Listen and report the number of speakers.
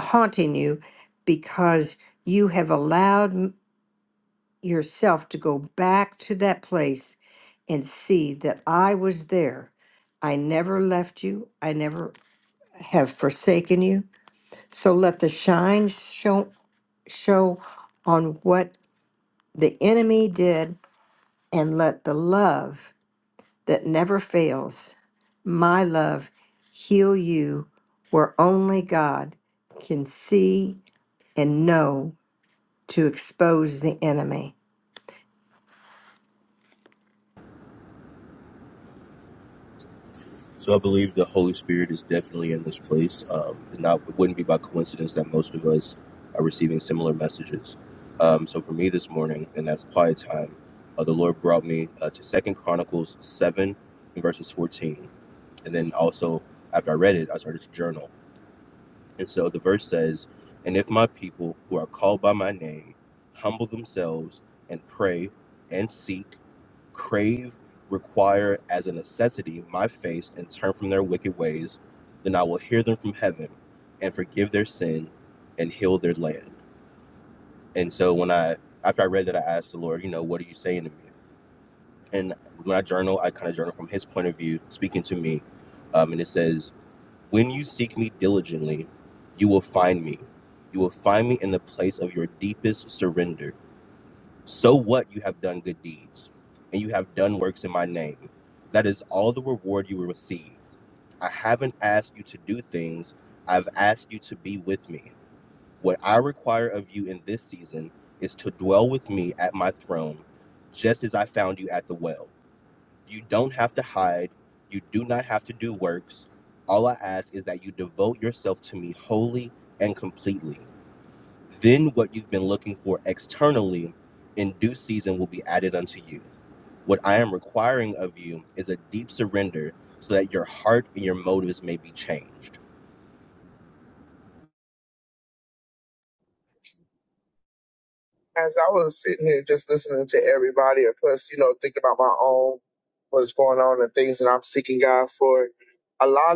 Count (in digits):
3